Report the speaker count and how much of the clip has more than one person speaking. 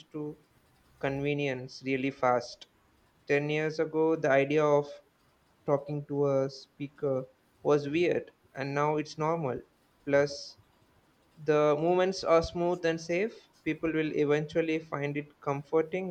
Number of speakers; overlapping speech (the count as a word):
one, no overlap